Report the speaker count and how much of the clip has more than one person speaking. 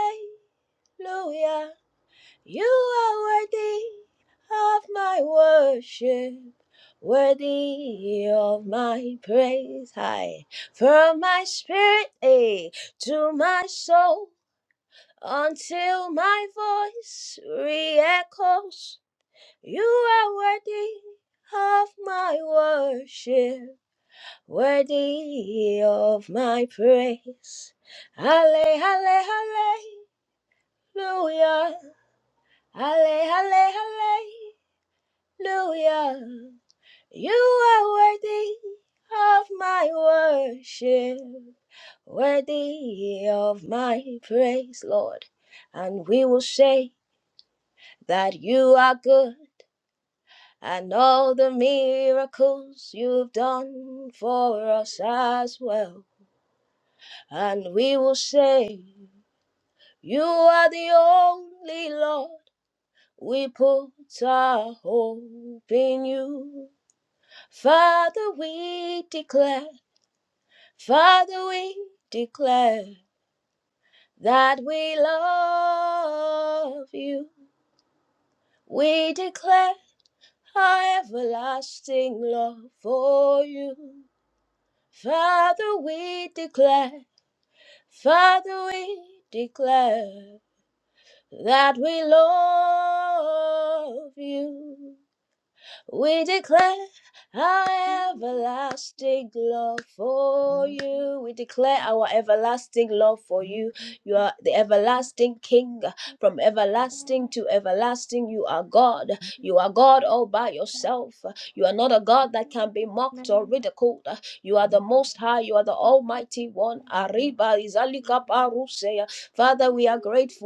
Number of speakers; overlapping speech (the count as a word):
one, no overlap